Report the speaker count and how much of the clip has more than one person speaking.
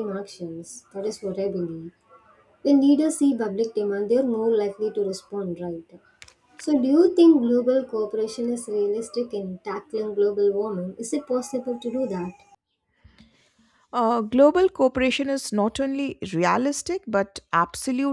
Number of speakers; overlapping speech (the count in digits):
2, no overlap